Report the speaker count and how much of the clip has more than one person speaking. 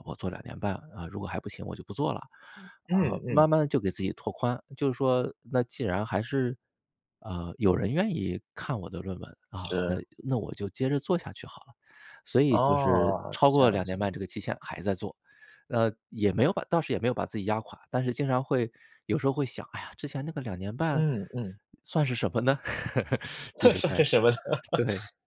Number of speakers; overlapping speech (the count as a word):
two, about 11%